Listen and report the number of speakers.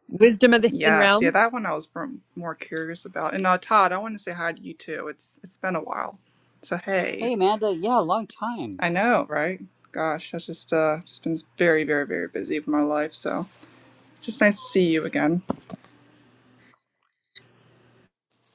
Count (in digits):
3